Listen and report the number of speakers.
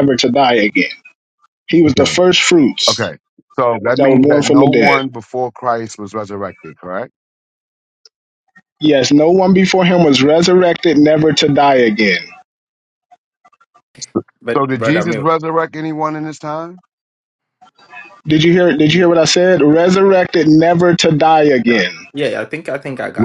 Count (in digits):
3